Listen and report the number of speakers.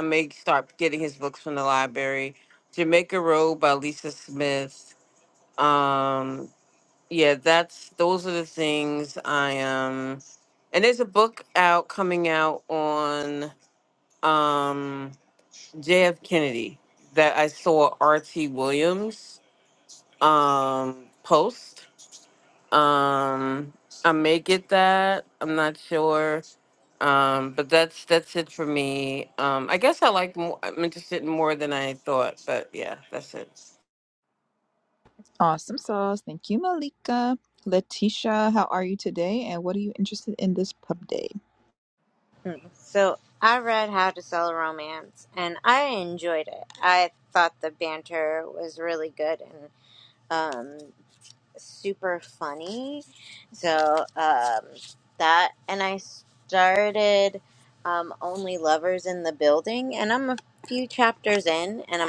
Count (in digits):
3